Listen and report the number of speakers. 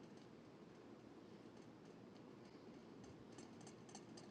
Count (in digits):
0